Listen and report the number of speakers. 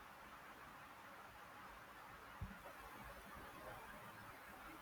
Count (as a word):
zero